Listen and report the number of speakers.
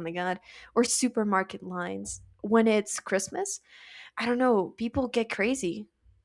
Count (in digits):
1